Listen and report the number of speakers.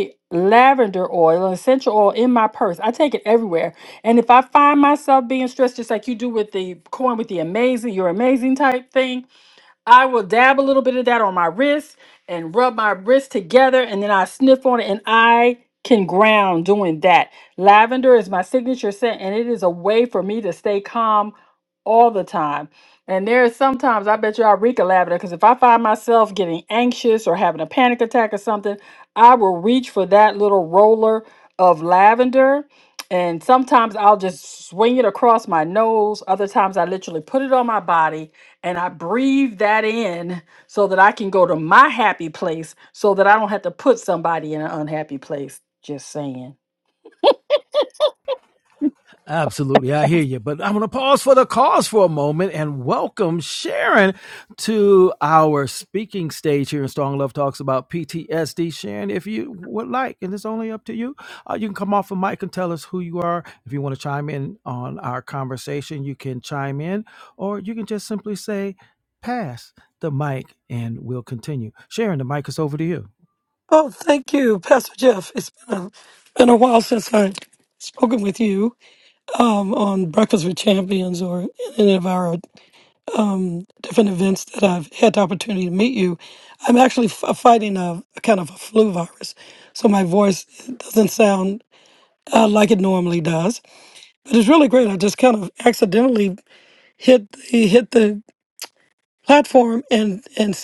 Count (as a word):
three